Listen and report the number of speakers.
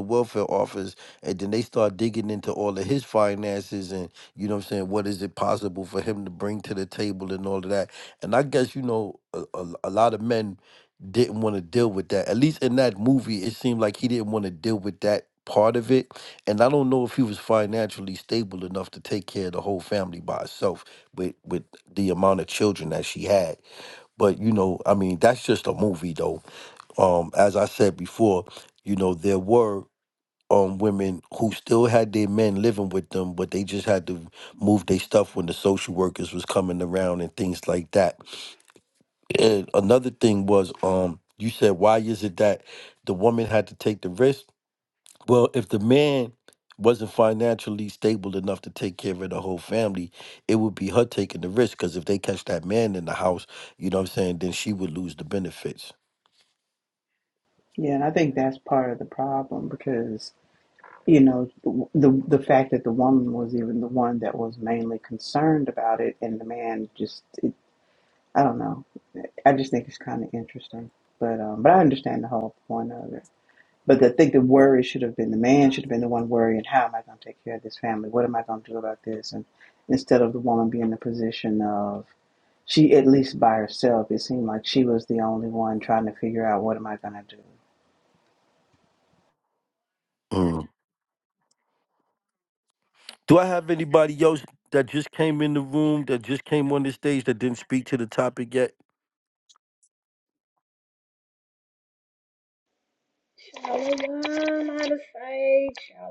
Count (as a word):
three